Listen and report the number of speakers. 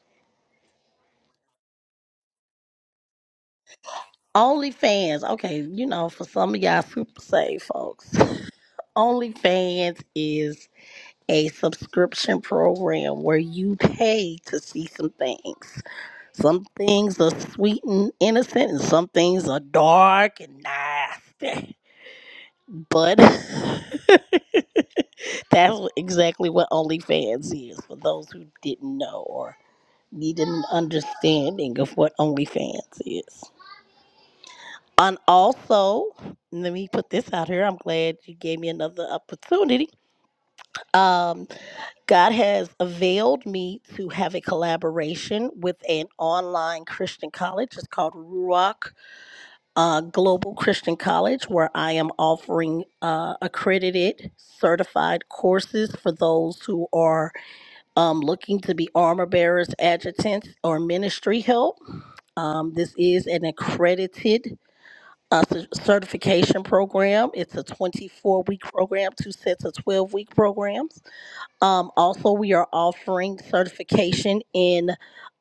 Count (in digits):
1